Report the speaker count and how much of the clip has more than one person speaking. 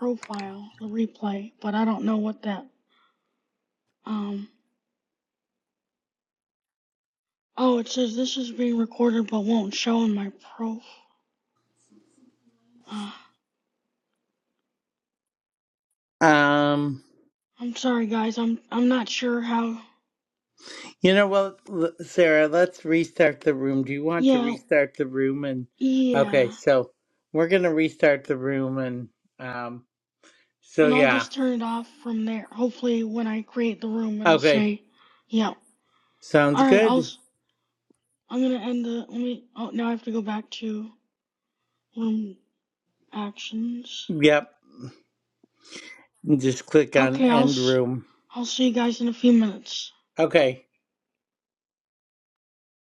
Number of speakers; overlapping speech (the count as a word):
two, about 6%